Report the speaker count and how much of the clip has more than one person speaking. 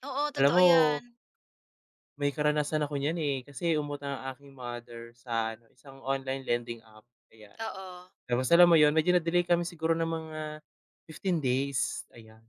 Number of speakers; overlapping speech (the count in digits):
2, about 2%